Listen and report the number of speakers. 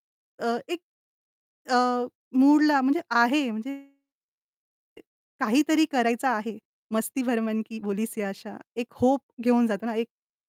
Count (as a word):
one